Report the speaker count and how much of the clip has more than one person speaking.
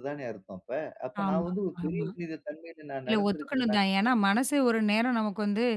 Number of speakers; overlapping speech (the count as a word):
two, about 22%